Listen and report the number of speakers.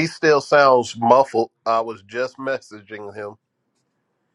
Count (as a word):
one